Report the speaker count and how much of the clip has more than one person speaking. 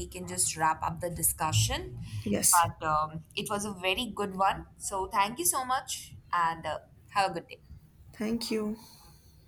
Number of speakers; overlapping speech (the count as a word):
two, about 1%